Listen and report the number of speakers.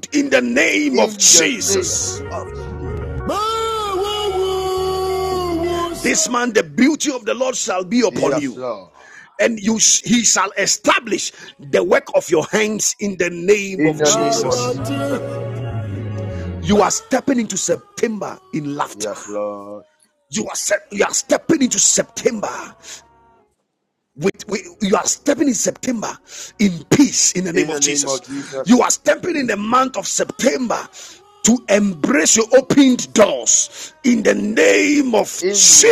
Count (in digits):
2